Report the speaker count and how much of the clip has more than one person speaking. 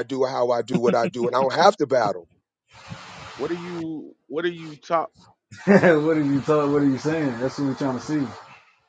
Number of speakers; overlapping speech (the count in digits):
3, no overlap